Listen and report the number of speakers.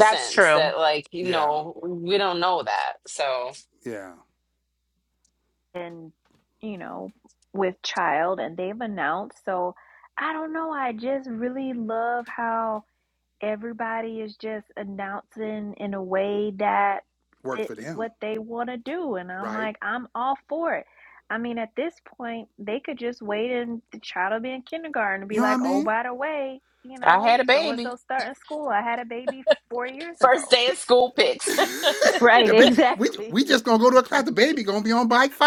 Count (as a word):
four